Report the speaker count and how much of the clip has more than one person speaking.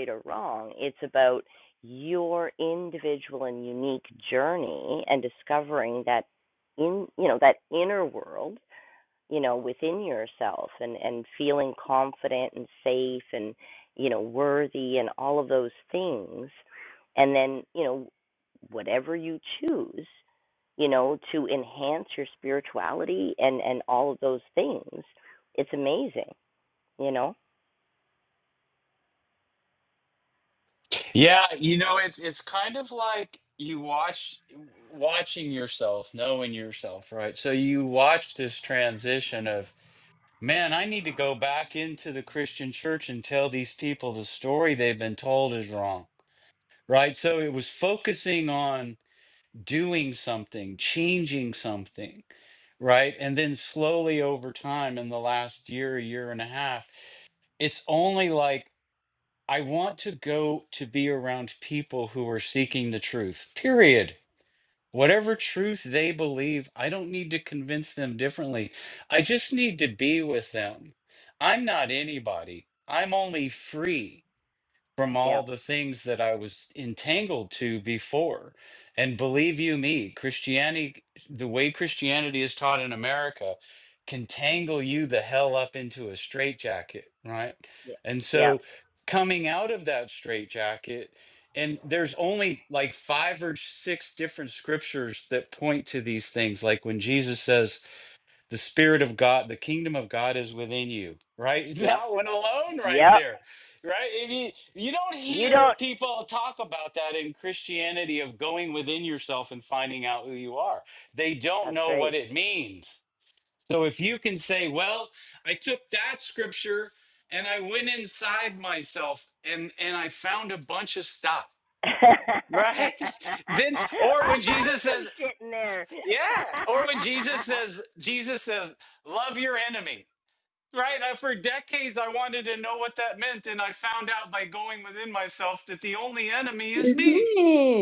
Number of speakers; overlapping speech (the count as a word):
three, about 2%